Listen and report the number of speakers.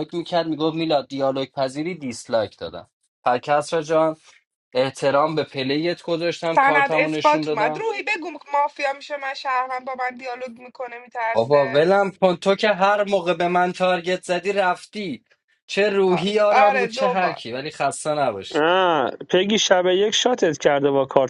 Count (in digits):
3